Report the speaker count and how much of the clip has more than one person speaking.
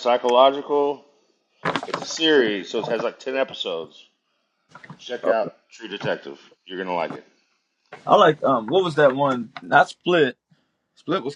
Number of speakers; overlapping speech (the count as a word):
two, no overlap